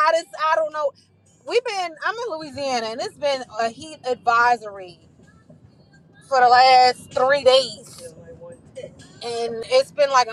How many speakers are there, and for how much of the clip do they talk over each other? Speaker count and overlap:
1, no overlap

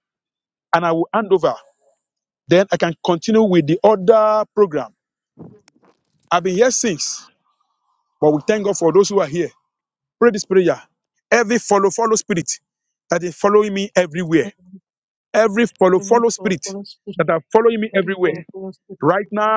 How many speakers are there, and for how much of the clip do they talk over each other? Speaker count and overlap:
2, about 7%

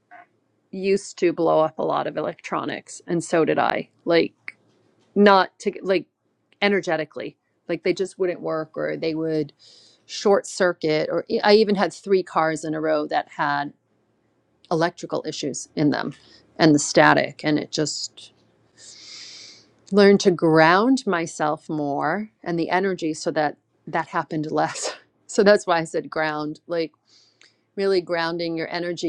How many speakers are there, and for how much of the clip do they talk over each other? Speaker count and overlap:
1, no overlap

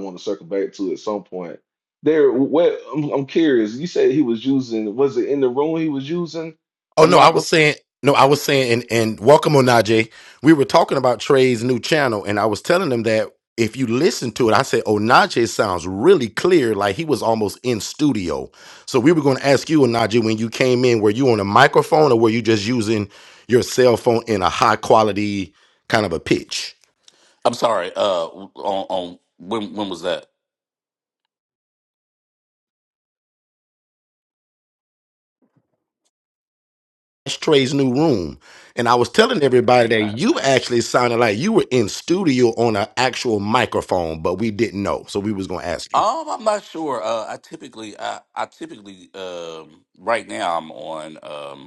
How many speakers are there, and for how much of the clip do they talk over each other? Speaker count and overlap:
3, about 2%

